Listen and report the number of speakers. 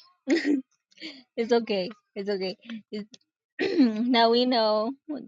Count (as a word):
one